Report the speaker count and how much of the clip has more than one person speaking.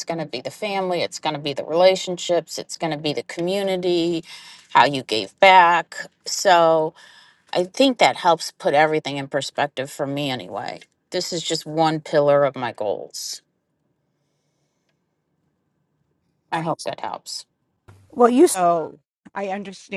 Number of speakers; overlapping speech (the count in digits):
2, no overlap